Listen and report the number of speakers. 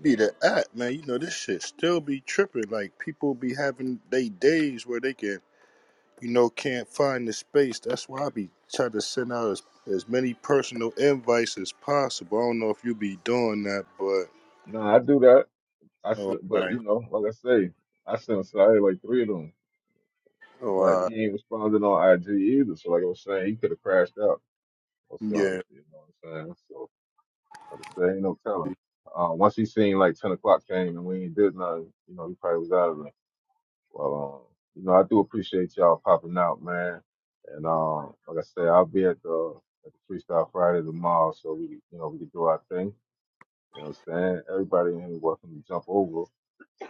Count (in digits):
2